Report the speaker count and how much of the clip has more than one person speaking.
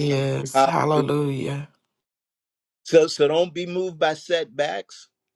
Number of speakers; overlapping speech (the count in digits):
2, about 4%